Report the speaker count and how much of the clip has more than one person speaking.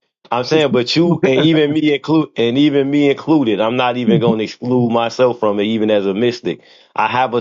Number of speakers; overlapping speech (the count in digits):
1, no overlap